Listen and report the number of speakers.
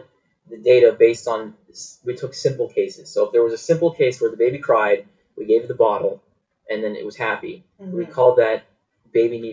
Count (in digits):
1